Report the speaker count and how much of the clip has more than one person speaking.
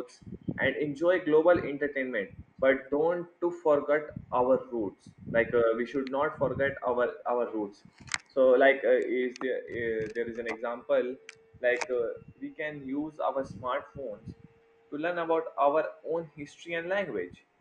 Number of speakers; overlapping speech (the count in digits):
1, no overlap